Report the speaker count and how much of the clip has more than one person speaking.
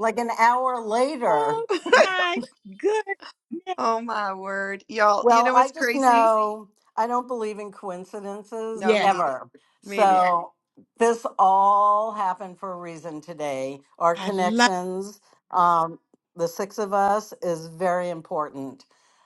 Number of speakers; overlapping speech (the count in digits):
3, about 14%